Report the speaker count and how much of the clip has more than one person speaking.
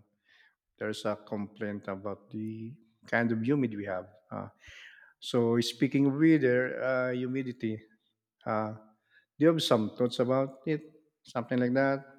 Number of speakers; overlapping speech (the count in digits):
1, no overlap